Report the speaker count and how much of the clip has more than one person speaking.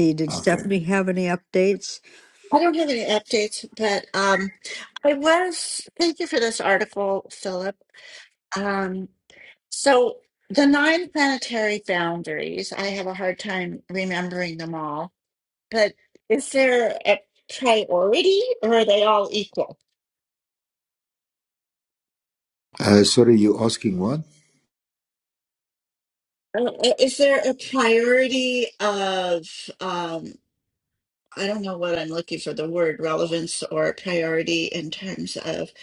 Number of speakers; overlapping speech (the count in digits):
3, about 1%